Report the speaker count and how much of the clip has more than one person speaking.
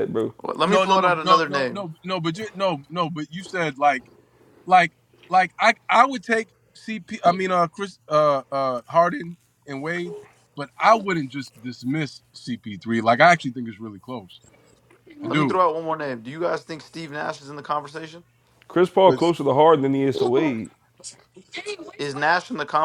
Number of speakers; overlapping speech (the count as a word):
three, about 7%